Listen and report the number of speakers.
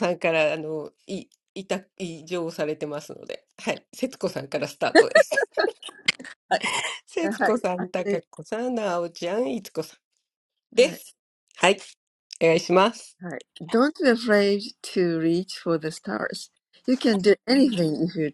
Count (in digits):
2